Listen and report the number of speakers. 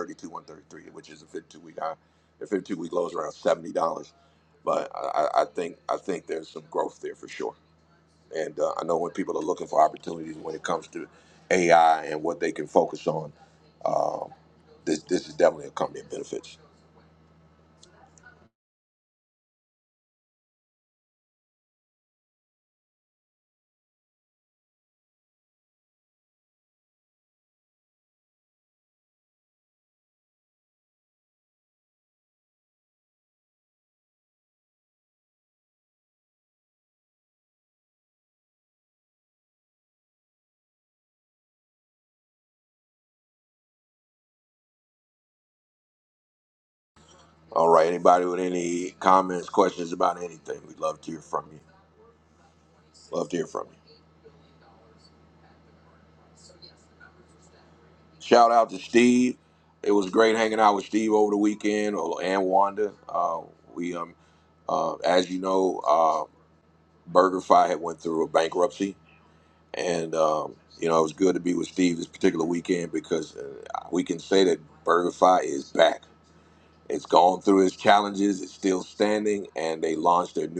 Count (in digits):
1